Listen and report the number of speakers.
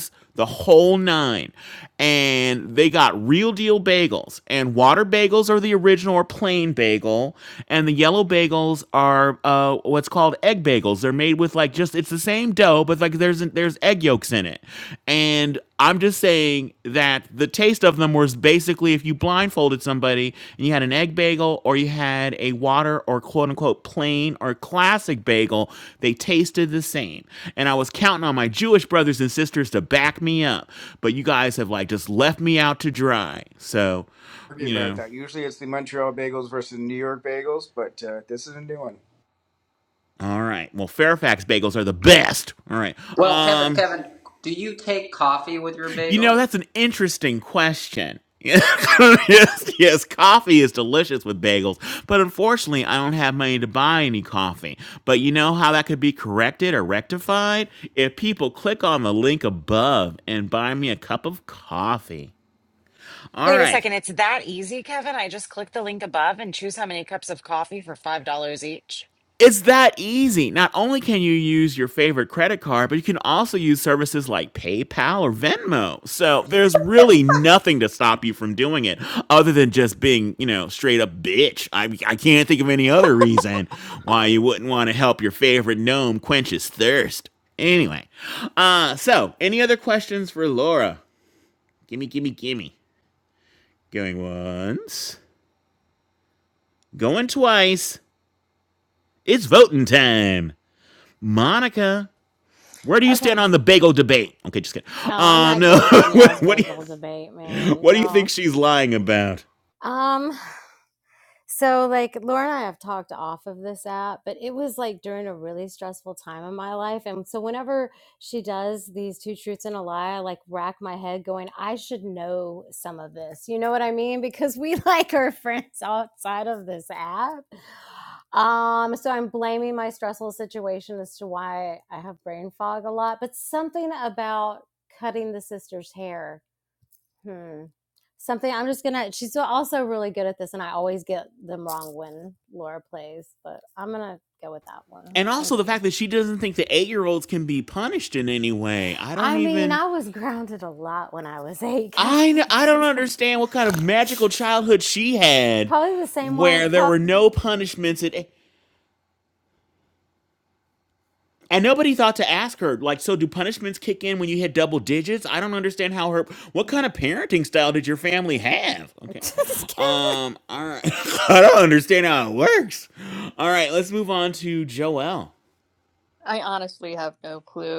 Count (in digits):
6